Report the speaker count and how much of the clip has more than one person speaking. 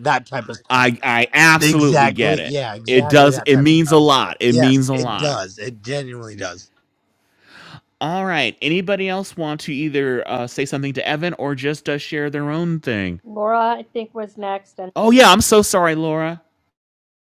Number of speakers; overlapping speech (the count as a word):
three, about 17%